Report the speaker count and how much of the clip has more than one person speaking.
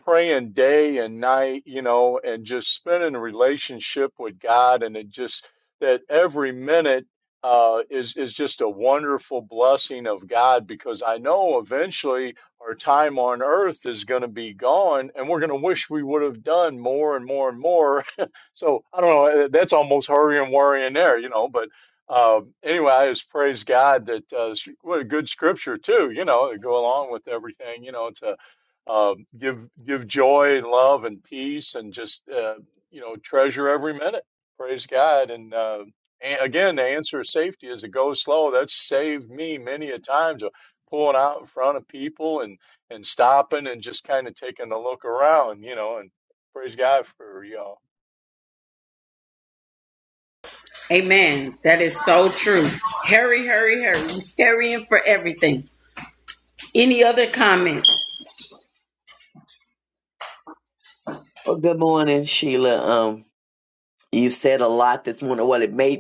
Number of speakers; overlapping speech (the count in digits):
3, no overlap